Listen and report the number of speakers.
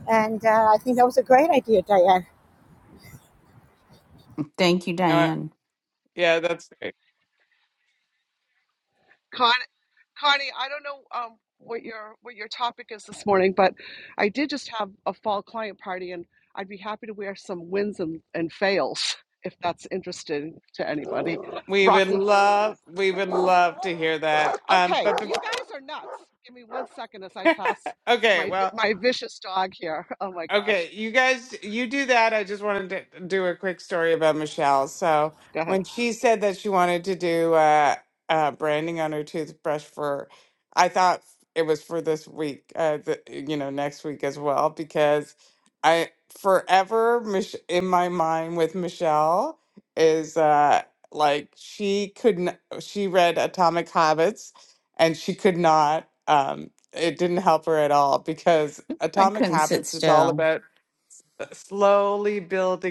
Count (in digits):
4